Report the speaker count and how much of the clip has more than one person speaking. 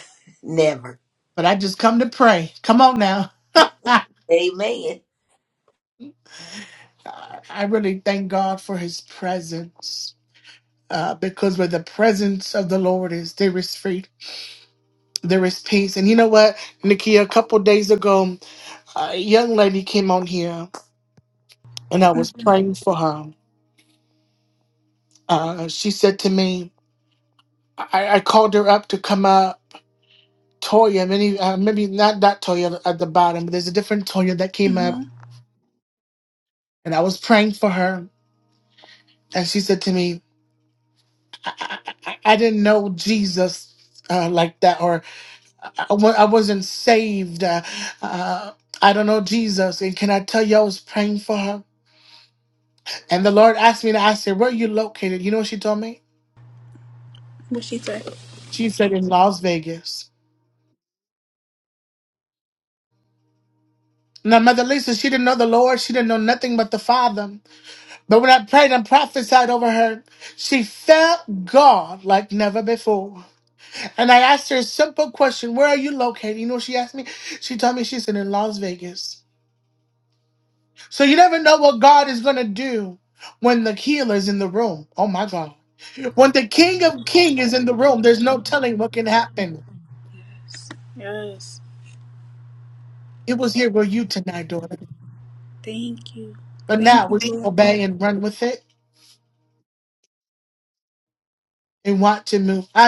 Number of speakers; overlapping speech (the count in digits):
3, about 1%